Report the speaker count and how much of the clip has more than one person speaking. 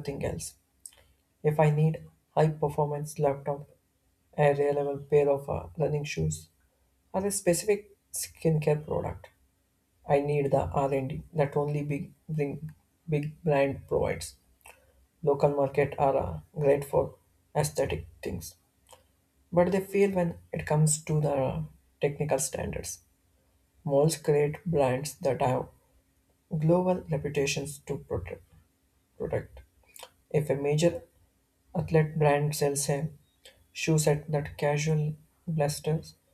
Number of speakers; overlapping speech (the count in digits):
1, no overlap